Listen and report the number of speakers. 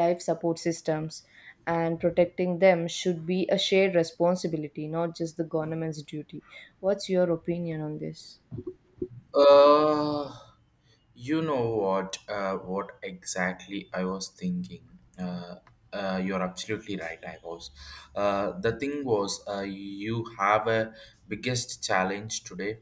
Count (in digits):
2